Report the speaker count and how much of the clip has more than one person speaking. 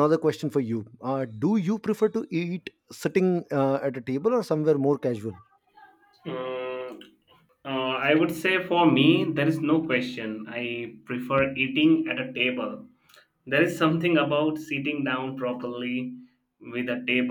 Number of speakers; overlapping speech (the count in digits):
2, no overlap